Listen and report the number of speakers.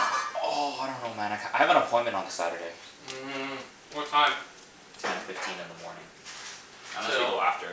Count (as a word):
two